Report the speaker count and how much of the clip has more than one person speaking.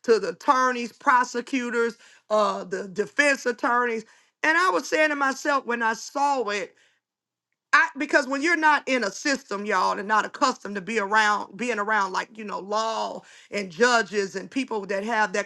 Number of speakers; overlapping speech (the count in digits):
1, no overlap